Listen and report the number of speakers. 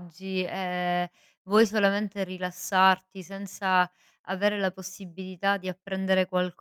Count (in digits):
1